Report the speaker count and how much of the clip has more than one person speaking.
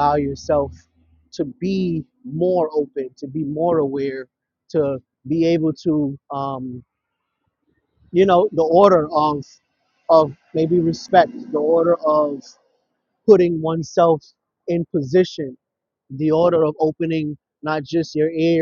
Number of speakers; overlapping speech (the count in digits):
1, no overlap